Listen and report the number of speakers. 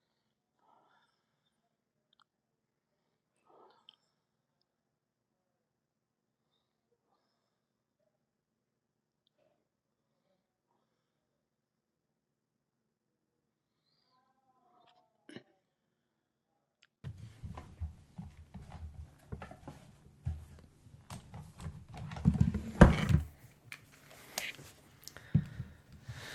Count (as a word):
zero